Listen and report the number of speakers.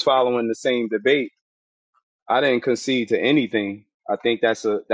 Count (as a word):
one